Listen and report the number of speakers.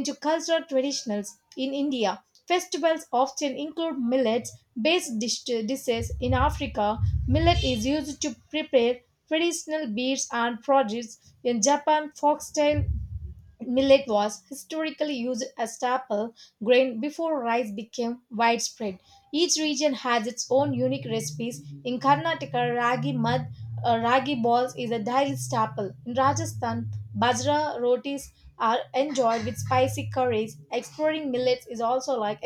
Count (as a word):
one